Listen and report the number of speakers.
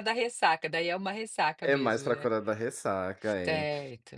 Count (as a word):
two